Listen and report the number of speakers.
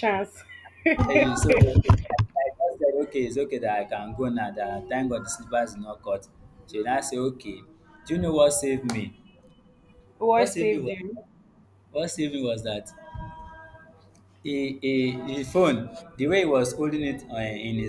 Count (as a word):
two